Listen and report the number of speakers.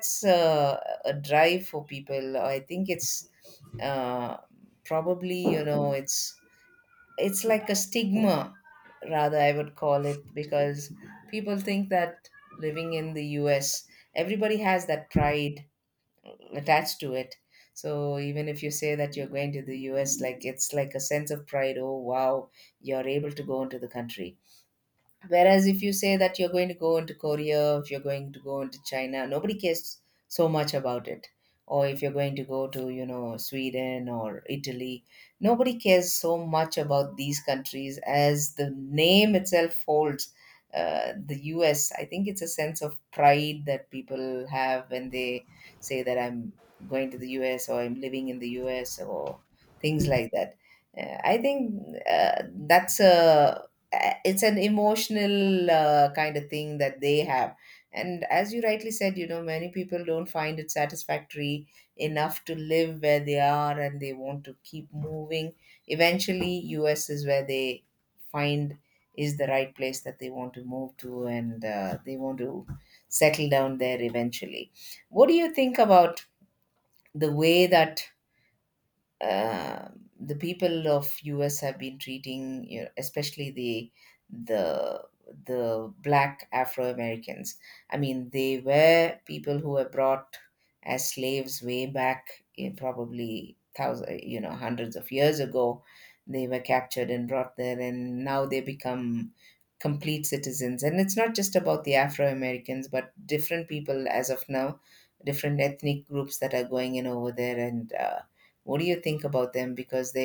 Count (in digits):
1